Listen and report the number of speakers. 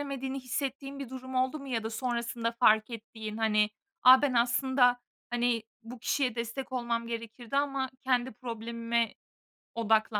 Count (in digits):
1